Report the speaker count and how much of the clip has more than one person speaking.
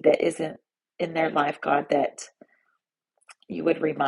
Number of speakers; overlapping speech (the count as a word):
one, no overlap